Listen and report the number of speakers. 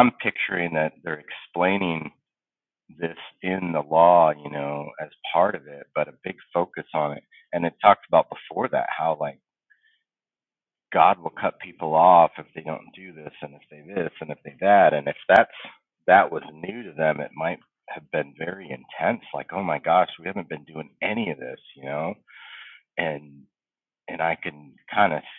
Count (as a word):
one